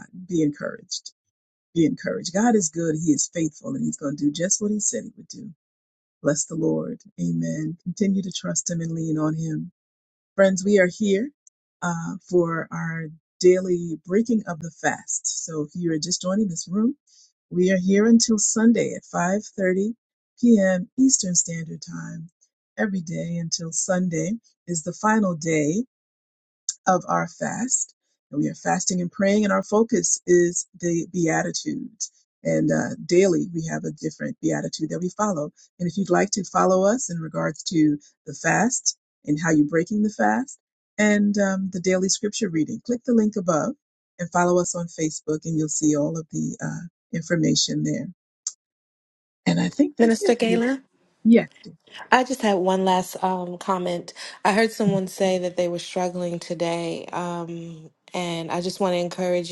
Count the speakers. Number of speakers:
two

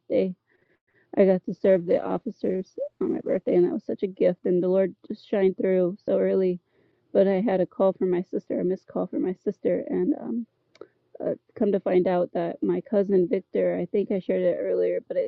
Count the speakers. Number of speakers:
one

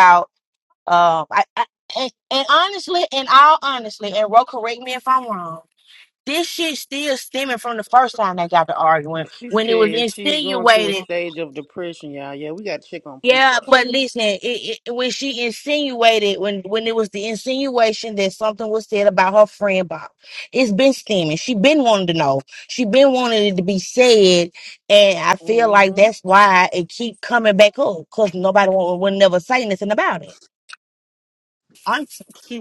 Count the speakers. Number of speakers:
two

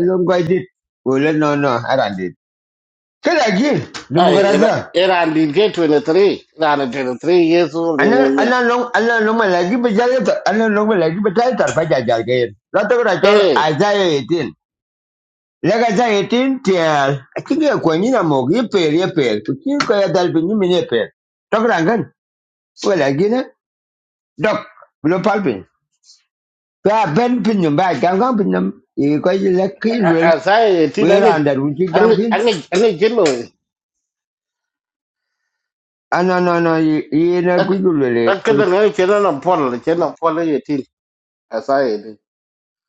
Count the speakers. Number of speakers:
two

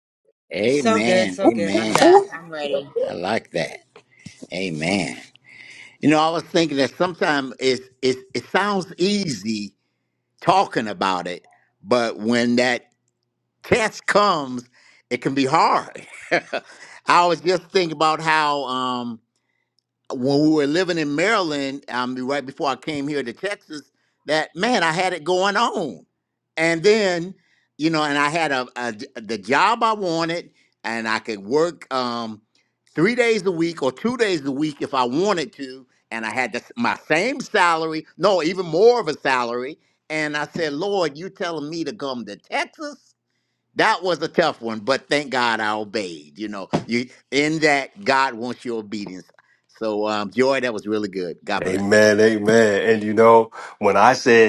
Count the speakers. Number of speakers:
three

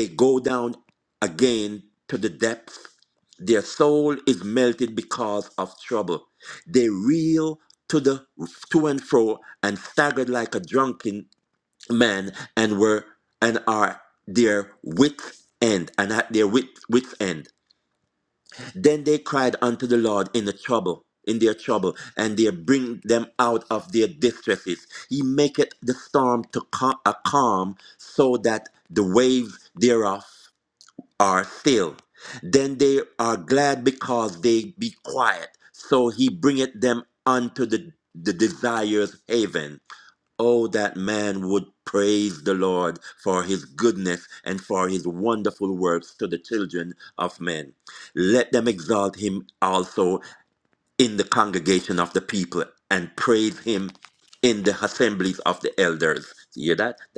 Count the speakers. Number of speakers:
one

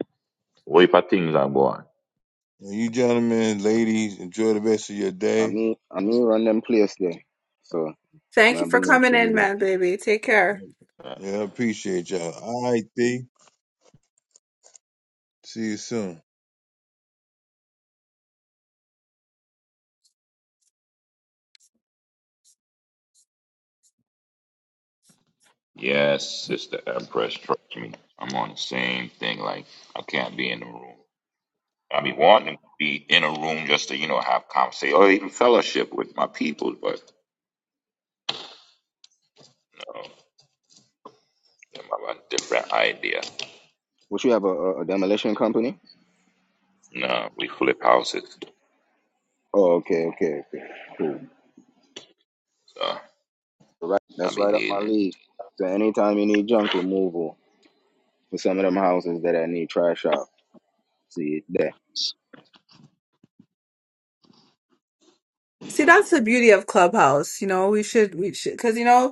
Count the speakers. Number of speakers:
four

